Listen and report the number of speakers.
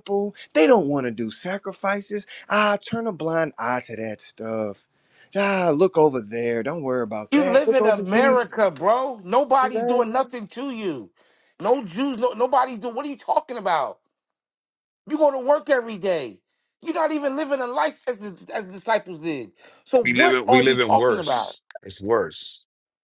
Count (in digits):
3